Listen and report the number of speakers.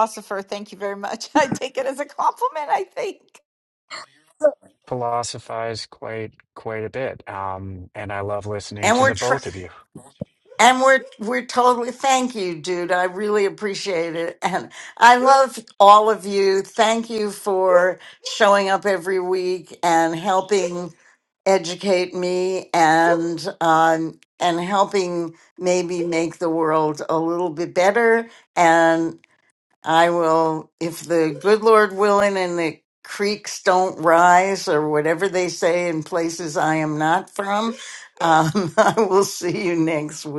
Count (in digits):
3